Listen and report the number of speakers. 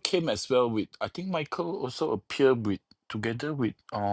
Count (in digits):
1